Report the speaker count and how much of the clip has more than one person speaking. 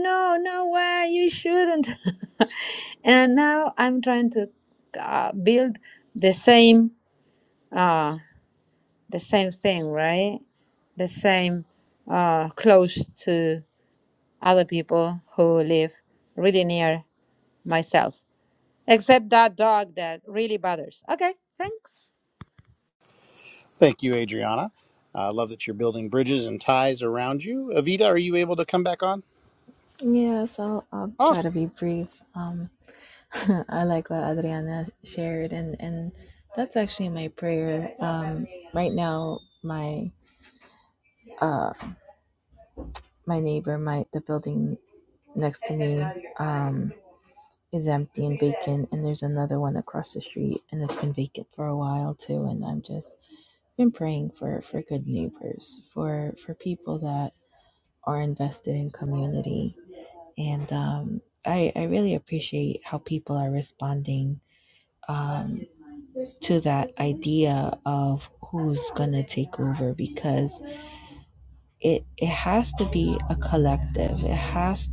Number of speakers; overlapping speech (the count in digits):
3, under 1%